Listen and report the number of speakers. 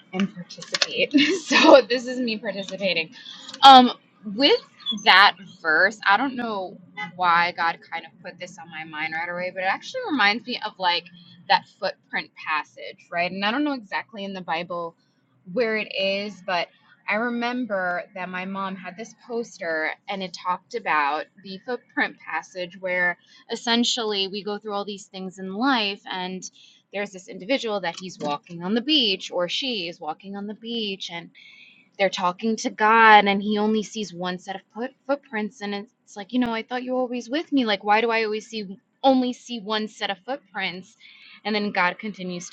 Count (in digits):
1